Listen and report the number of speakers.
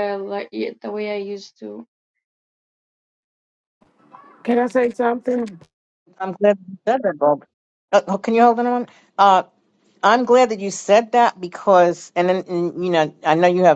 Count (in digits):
3